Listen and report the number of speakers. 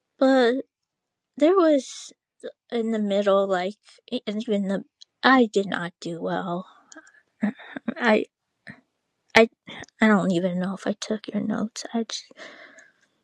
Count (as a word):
one